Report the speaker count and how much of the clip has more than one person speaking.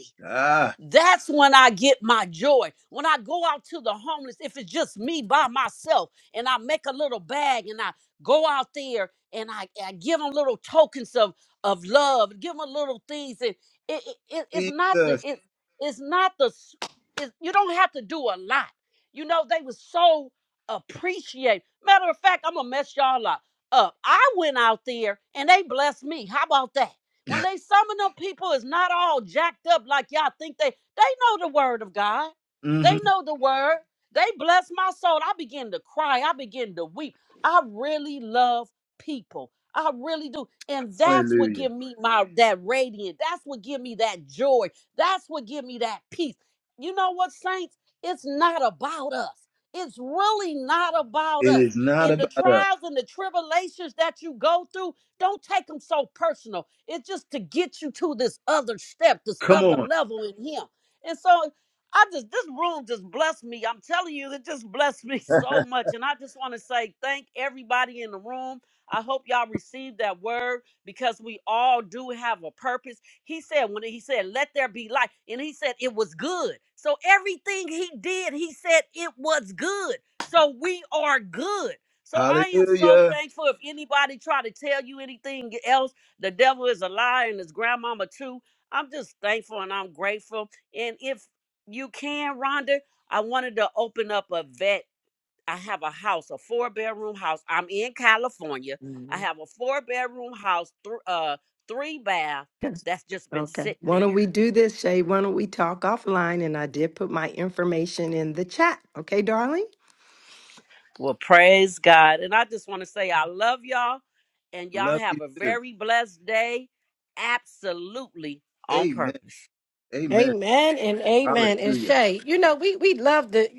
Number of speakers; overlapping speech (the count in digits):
4, about 6%